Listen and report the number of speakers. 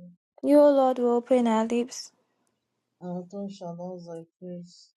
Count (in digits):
2